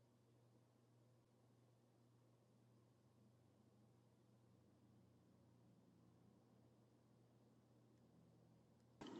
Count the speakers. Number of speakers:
0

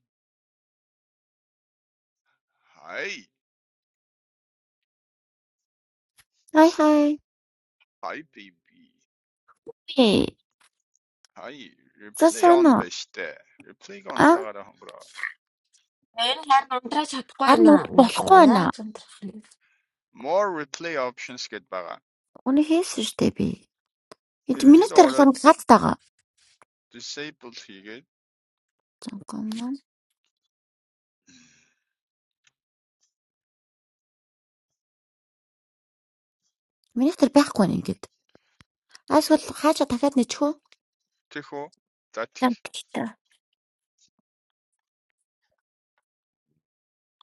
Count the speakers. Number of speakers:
3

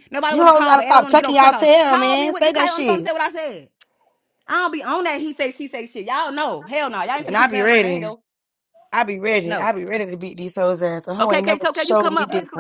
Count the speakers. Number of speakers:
2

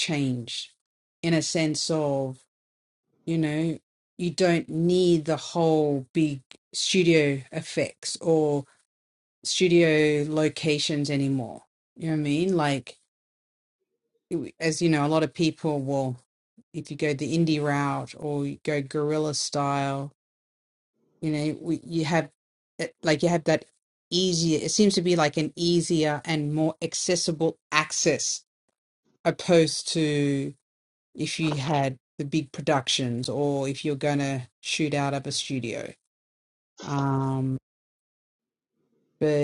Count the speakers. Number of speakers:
1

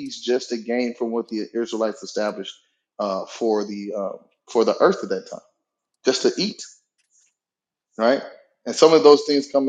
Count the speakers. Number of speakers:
1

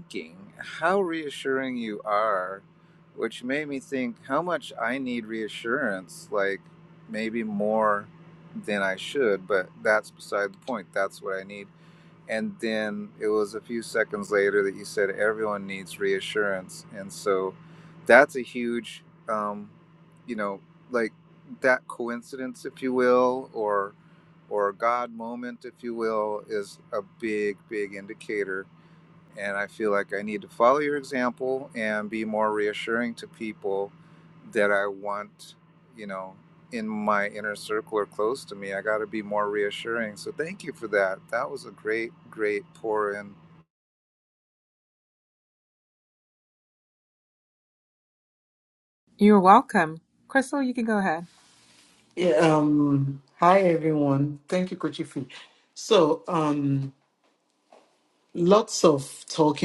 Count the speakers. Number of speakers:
3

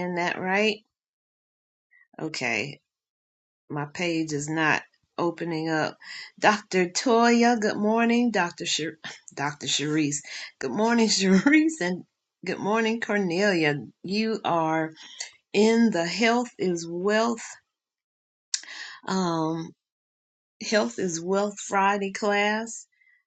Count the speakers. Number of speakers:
1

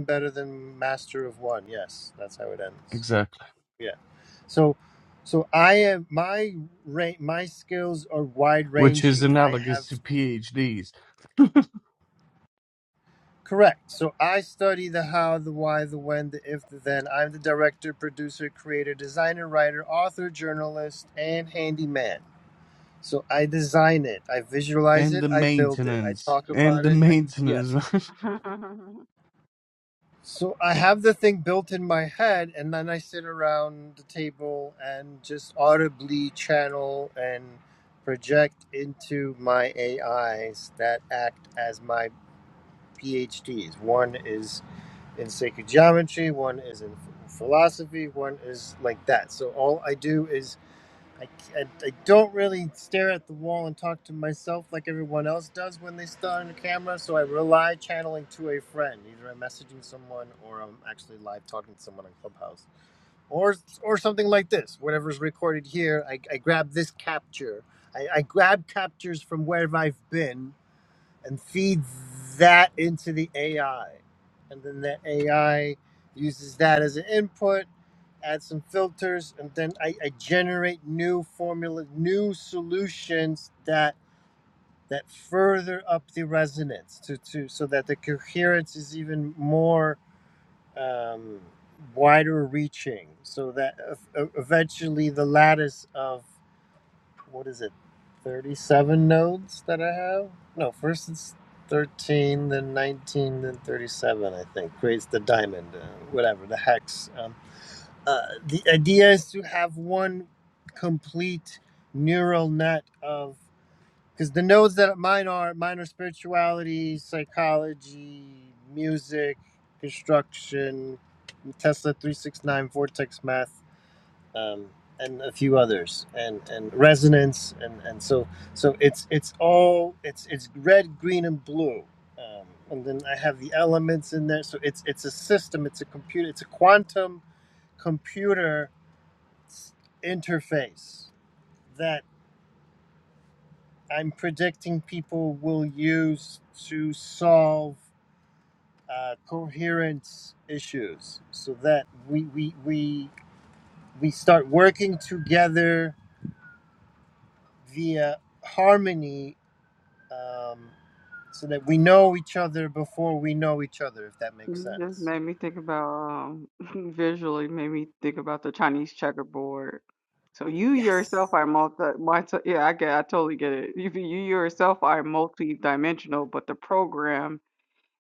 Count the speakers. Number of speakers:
3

